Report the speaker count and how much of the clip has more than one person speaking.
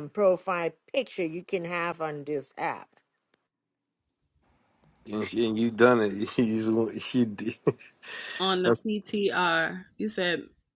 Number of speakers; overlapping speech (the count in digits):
3, about 1%